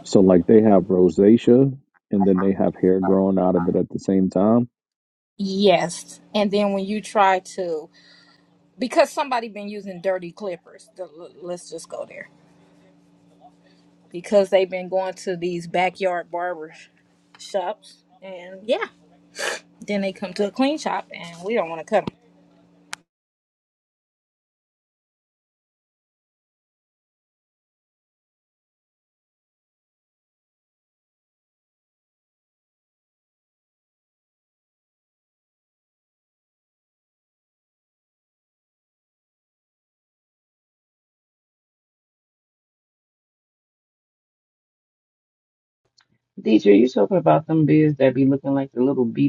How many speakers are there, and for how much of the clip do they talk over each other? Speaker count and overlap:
3, no overlap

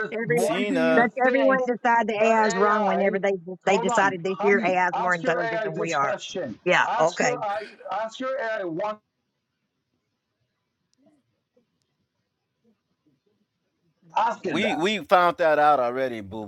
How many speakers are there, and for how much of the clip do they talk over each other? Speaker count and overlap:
3, about 35%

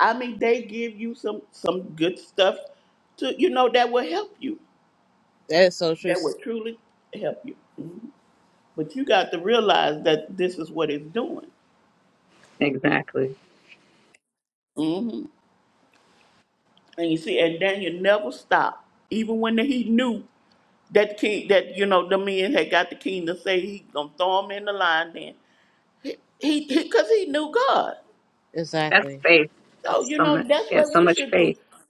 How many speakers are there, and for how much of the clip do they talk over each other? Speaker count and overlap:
3, about 7%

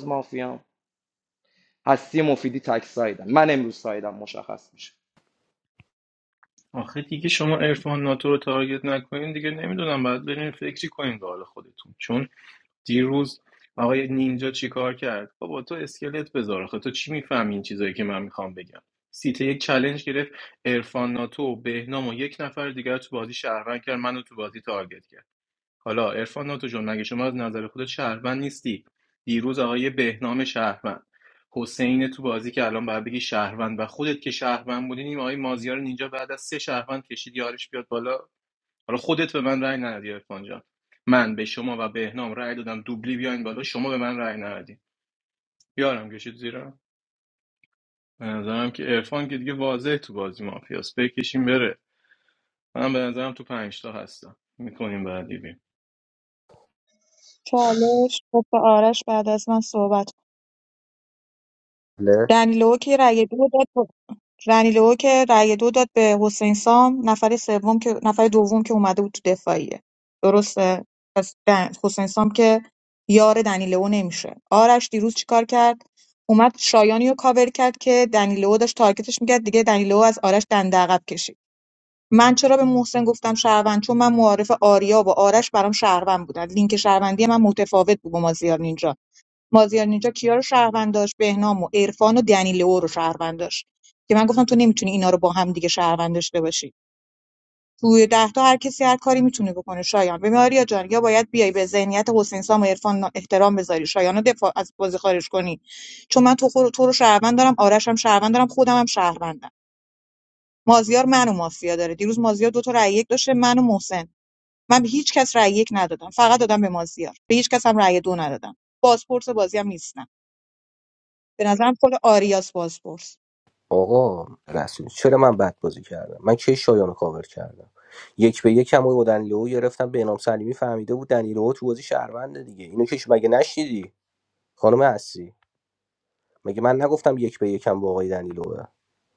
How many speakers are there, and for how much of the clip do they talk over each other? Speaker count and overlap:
4, no overlap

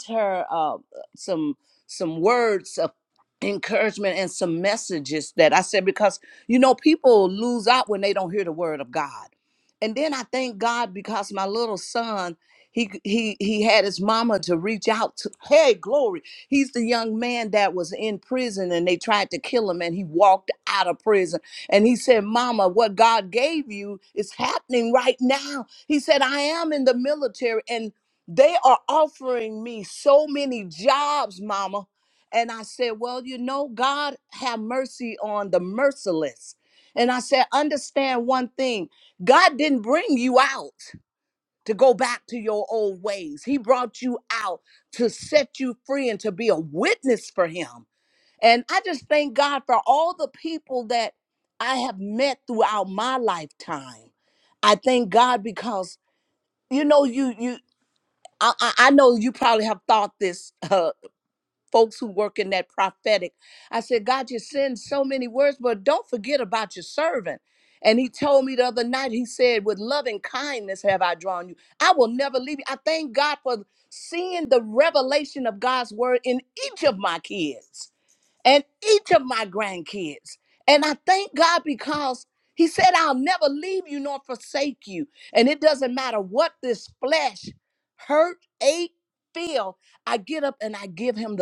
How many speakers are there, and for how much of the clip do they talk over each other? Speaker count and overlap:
1, no overlap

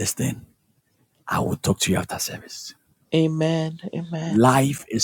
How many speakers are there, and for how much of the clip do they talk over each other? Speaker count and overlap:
2, about 2%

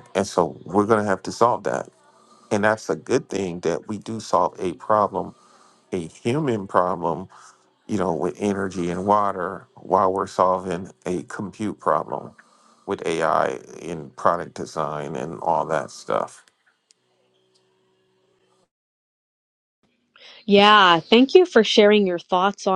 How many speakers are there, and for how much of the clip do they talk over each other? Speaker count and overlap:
2, no overlap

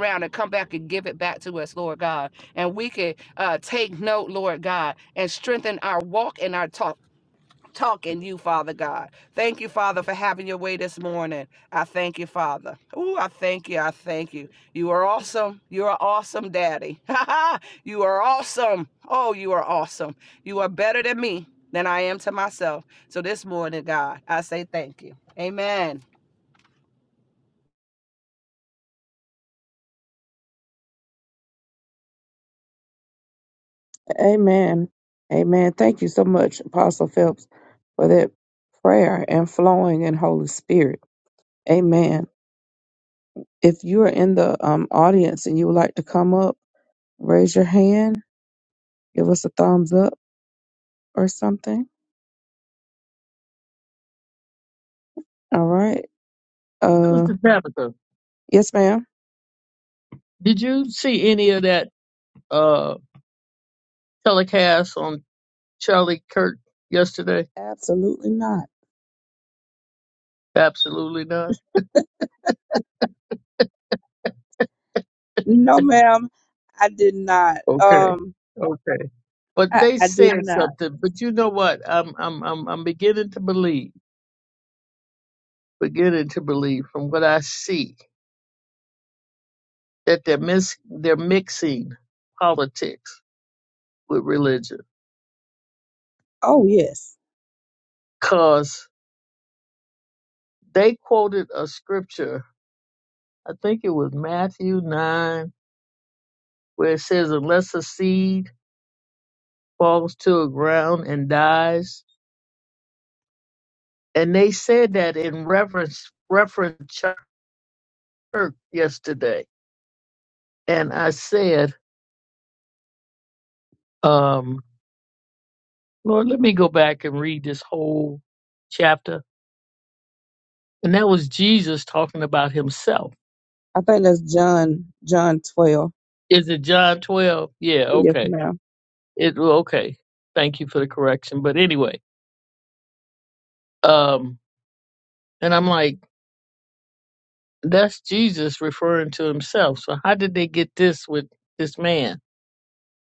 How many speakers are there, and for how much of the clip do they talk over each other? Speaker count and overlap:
3, about 1%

